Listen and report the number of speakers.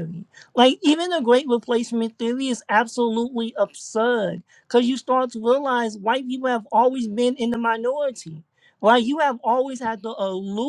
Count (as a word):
one